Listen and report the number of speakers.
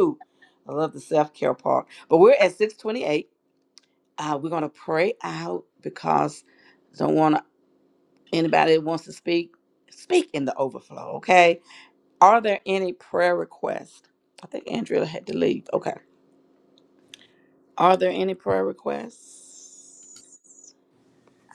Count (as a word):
one